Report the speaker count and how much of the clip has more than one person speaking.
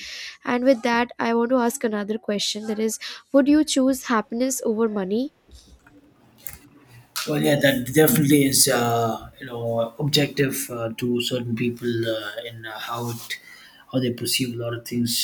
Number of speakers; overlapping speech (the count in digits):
2, no overlap